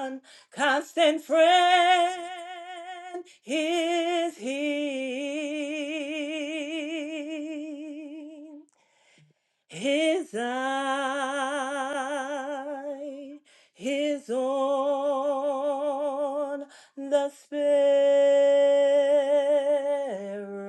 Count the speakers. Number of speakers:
1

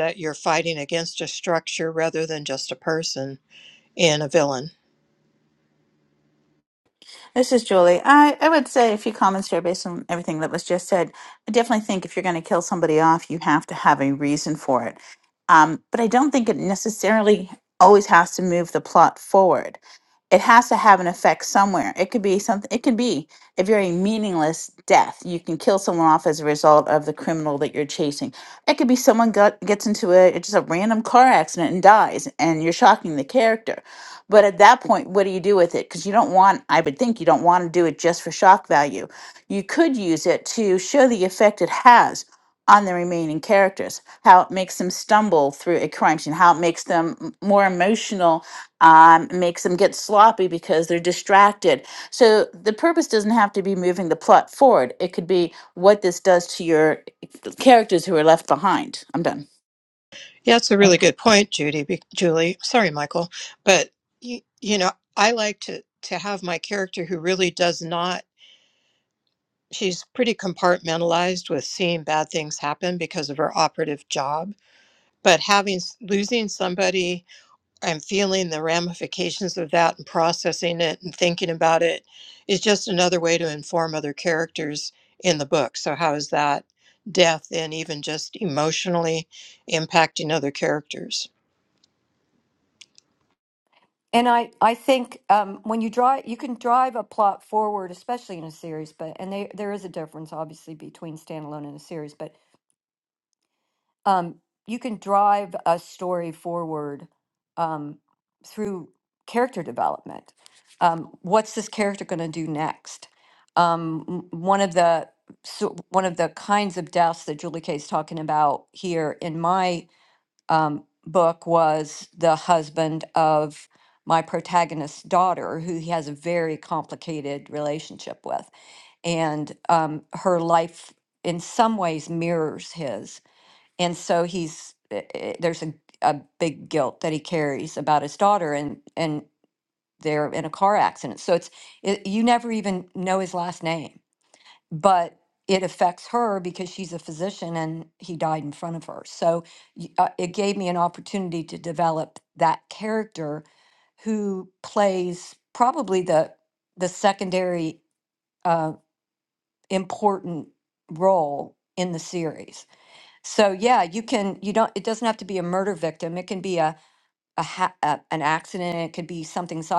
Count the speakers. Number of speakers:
3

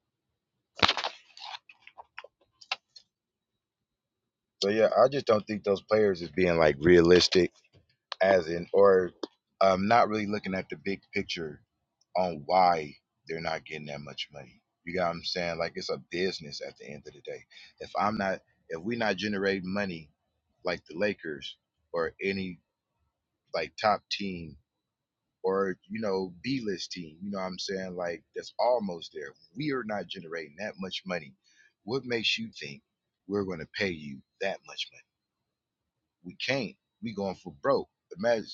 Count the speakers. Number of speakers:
1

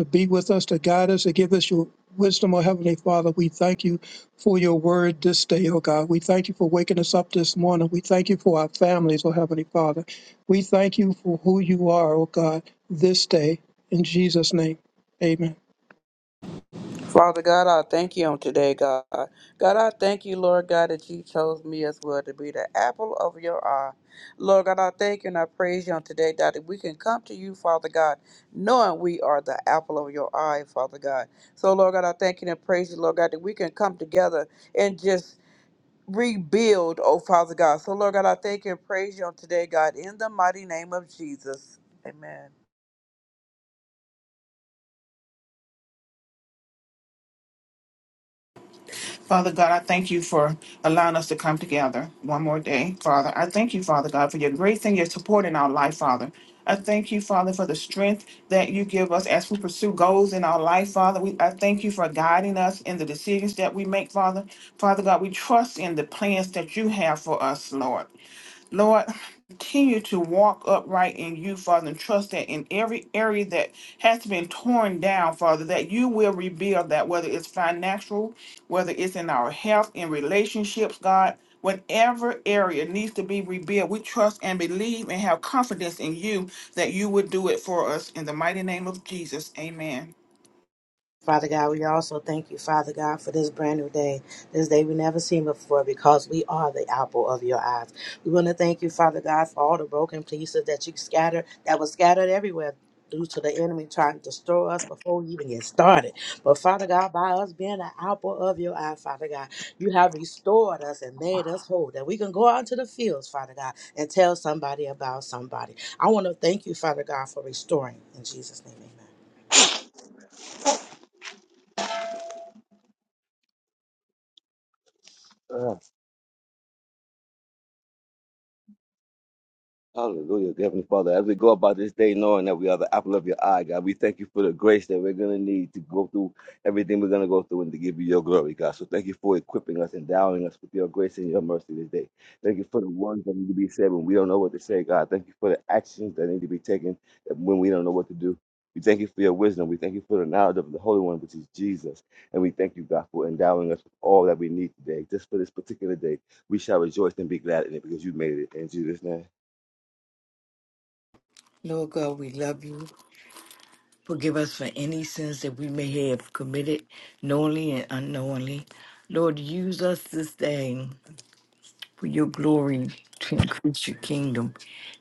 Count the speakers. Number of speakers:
6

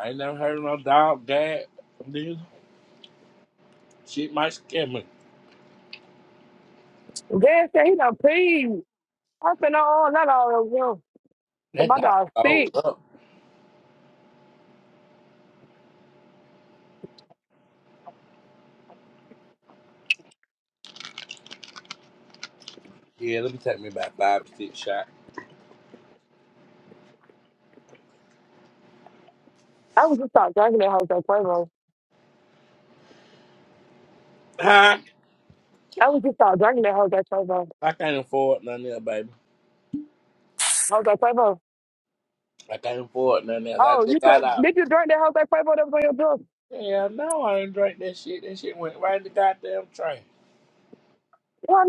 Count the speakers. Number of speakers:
2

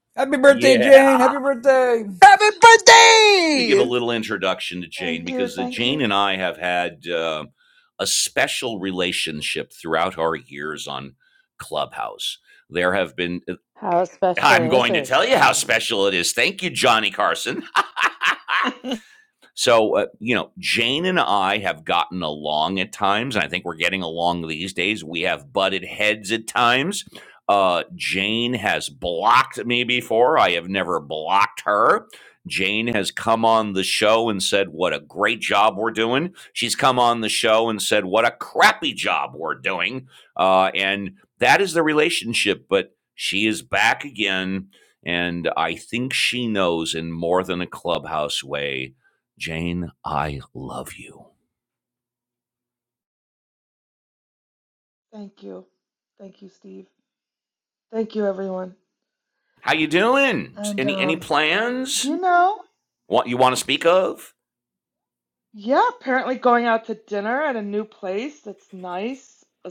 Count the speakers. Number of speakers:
5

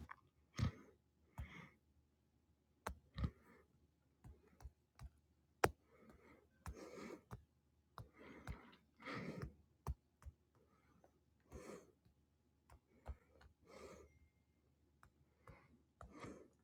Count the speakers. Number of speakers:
0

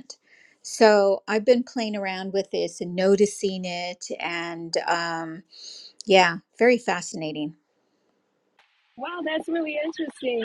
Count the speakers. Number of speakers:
2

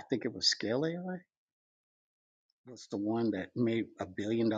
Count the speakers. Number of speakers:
1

